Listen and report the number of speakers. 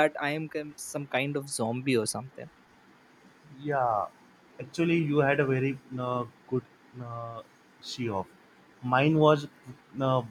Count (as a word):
two